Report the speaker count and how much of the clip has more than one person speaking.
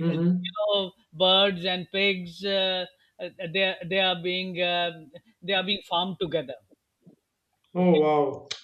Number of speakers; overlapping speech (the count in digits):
2, about 7%